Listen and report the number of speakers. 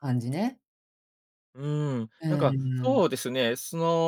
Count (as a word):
two